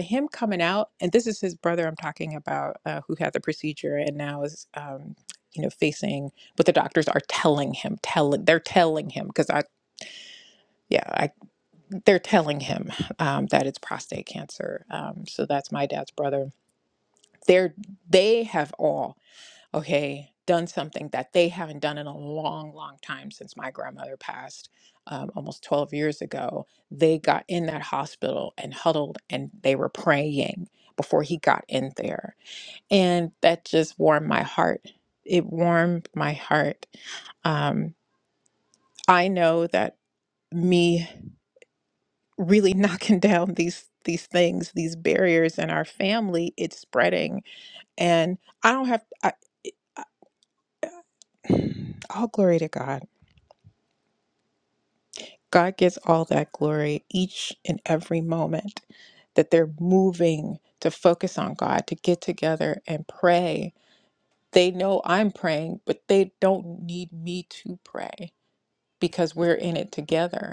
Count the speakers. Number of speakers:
1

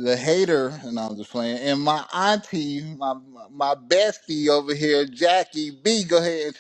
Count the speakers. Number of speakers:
1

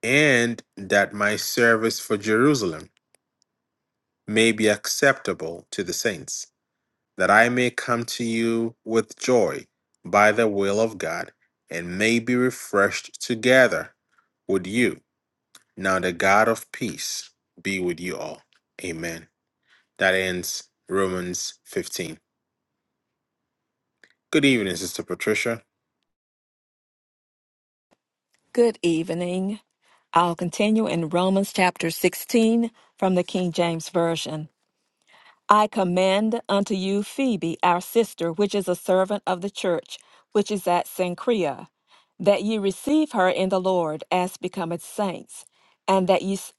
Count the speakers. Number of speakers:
2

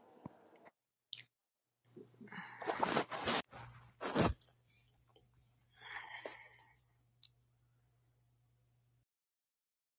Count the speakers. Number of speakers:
0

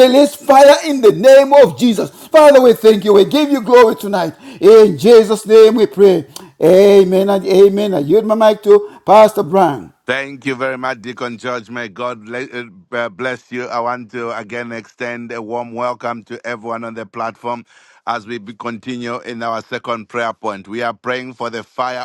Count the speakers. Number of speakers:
2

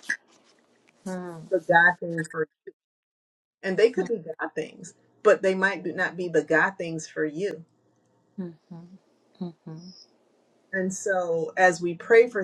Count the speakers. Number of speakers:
2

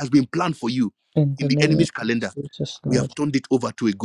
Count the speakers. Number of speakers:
2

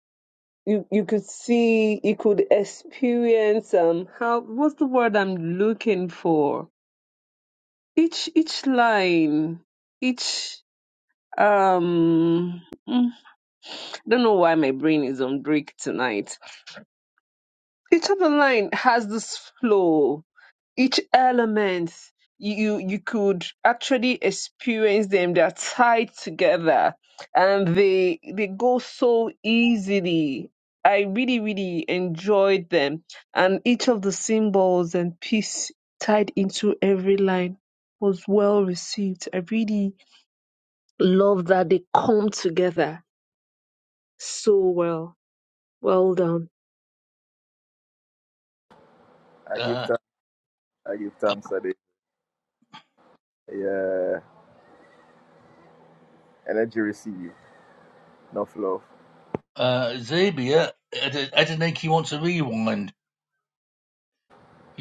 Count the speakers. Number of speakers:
3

